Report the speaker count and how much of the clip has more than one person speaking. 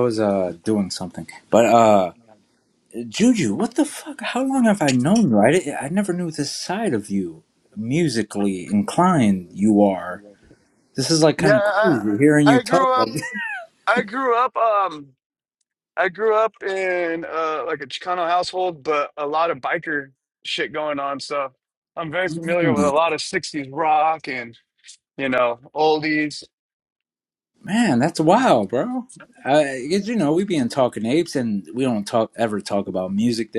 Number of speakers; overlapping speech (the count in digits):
2, about 5%